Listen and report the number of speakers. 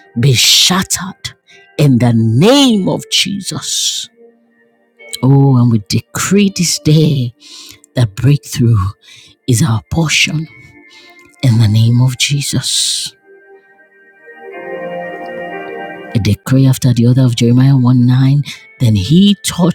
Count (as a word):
one